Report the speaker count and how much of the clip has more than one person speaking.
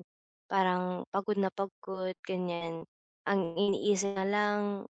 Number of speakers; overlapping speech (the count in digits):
1, no overlap